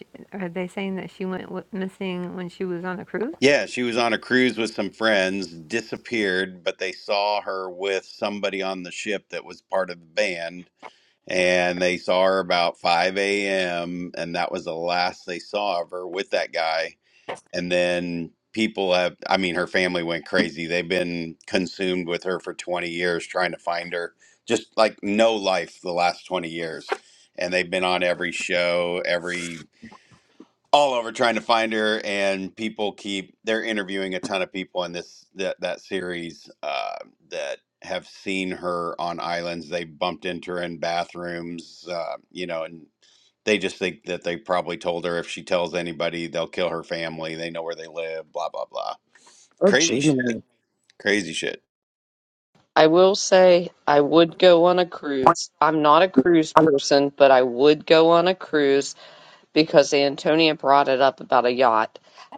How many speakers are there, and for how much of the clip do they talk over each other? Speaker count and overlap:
three, about 1%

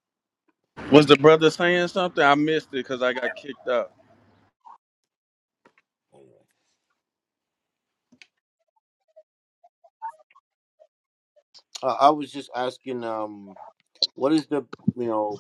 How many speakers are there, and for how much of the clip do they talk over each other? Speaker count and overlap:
two, no overlap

